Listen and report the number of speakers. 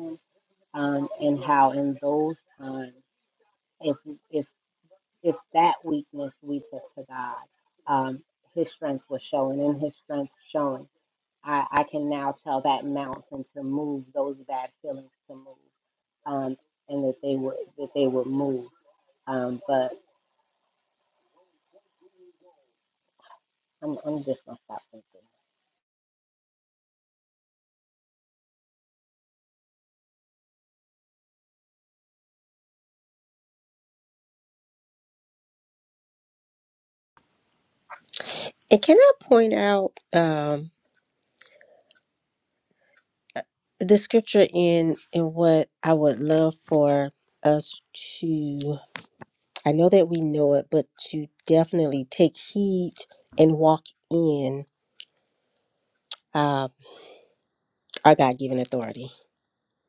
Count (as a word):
two